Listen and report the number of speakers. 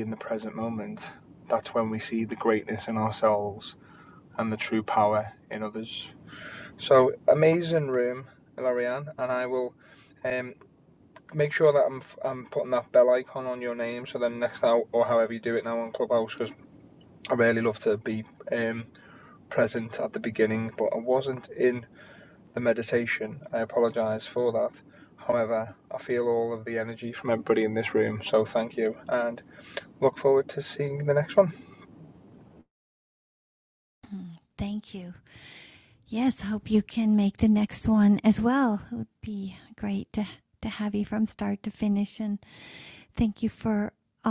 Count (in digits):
2